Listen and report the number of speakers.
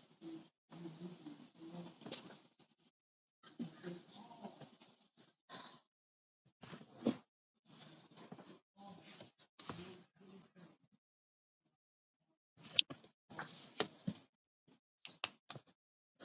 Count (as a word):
zero